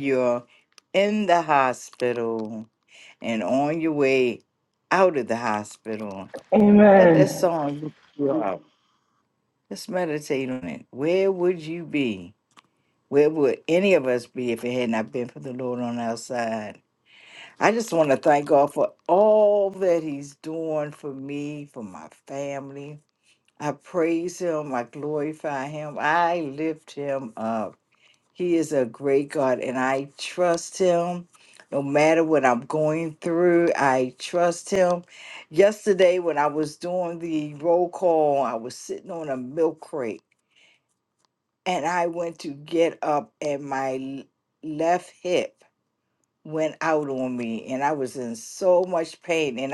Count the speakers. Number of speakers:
two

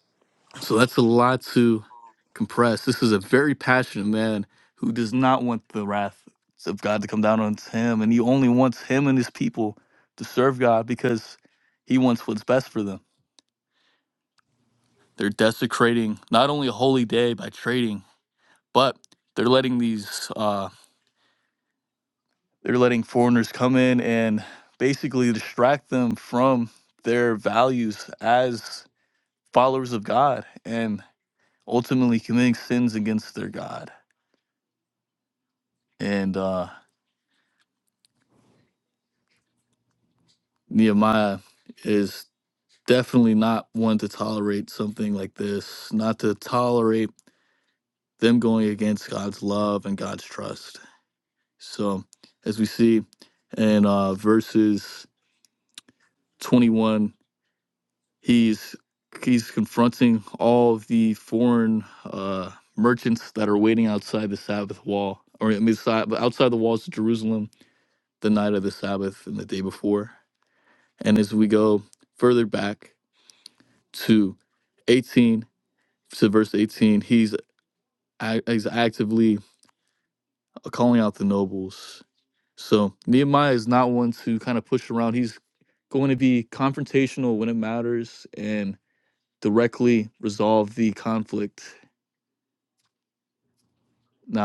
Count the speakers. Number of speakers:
one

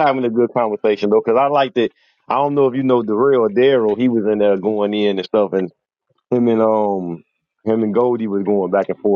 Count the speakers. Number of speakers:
one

